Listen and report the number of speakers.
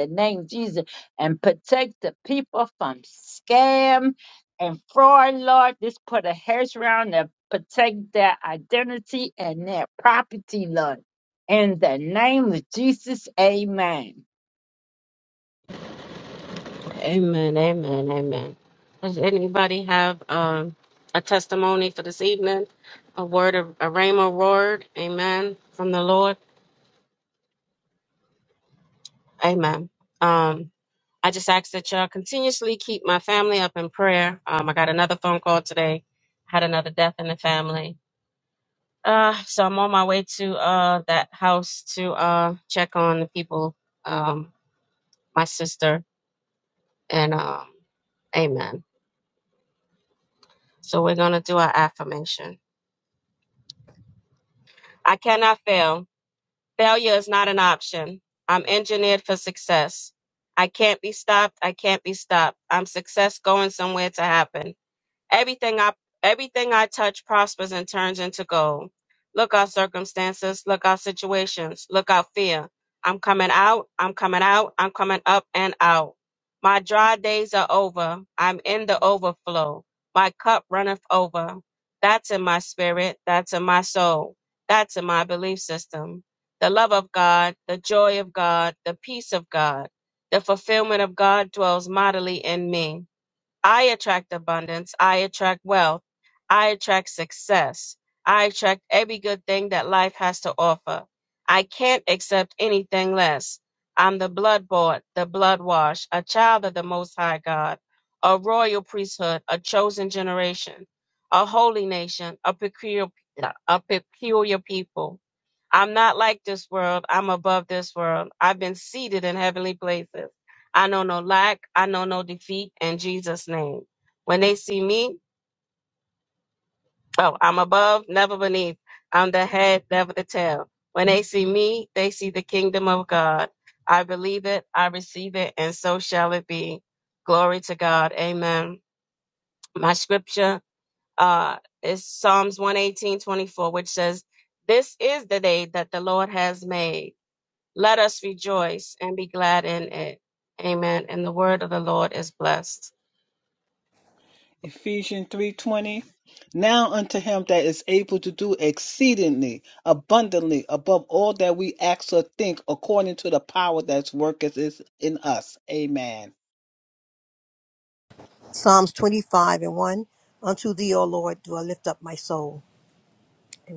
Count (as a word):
four